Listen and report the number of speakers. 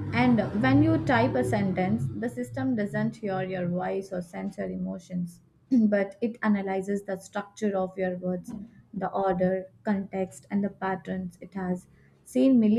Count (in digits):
1